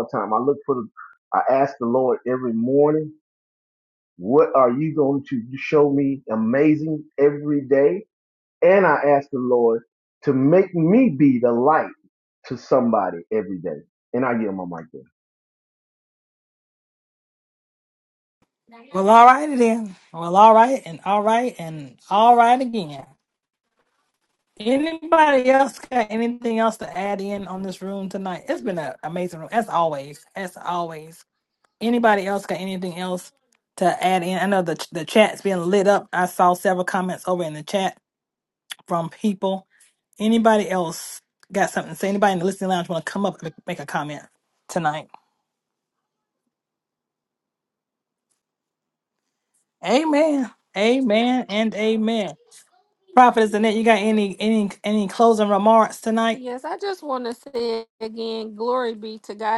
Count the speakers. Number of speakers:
three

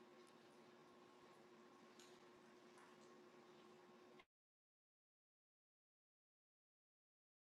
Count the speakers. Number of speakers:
zero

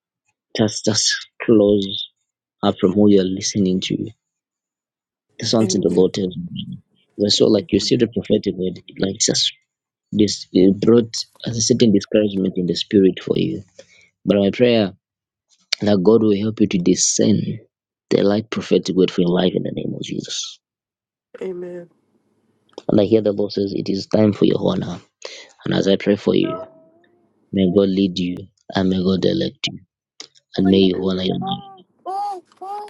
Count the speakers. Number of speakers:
two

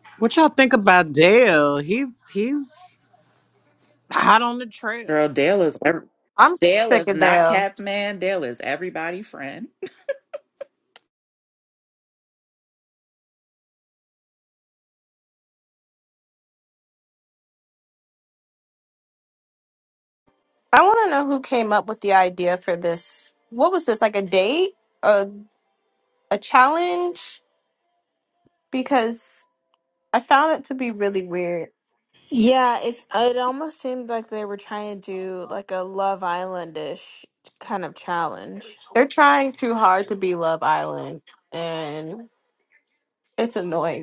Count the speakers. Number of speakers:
four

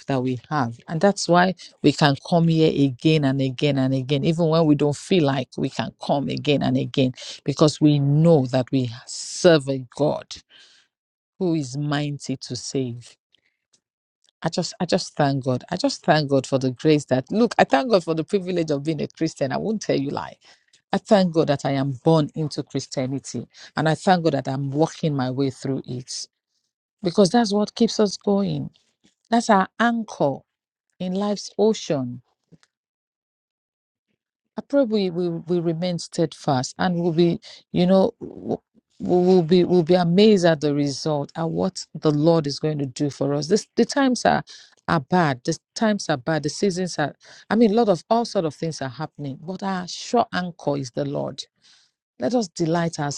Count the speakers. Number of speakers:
one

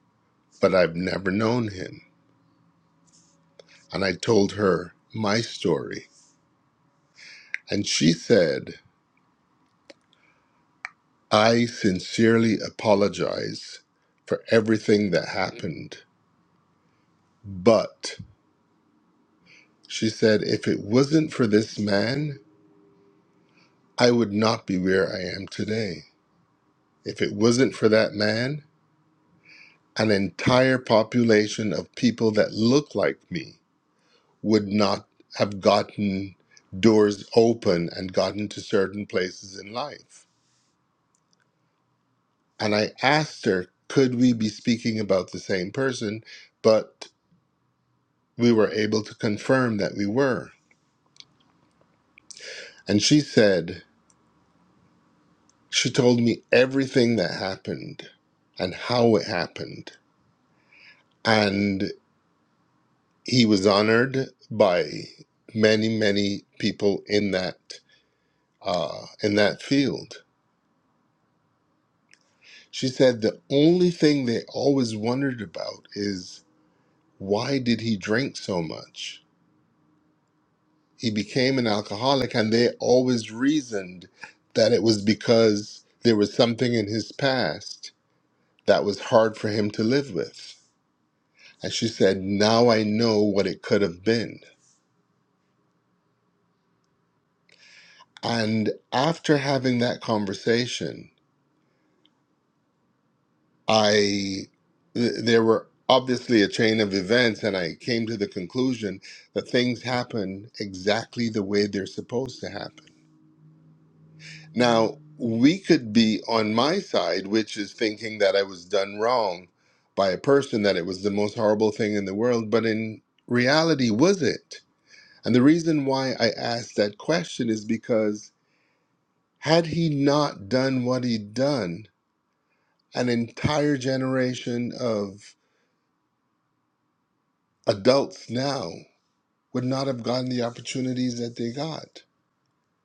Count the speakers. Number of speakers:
one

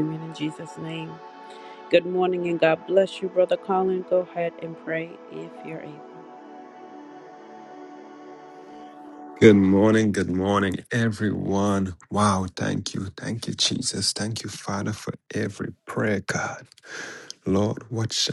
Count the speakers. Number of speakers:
two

